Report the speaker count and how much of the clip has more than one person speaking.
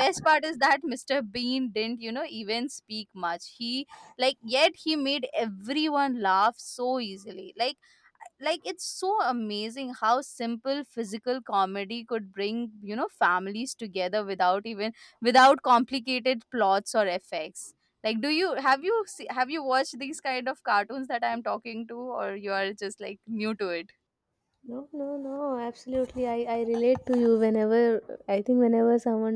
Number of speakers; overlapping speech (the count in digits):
2, no overlap